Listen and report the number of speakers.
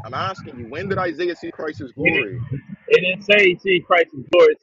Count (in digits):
2